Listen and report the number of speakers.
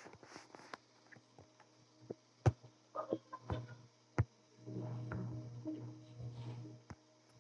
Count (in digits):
0